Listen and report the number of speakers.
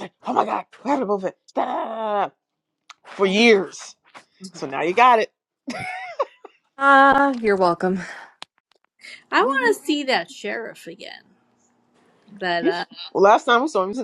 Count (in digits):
3